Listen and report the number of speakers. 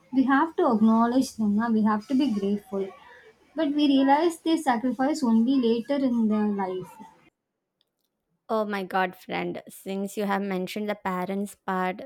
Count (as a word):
two